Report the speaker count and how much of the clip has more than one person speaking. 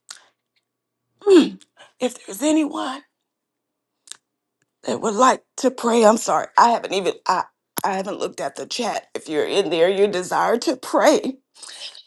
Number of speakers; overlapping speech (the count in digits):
1, no overlap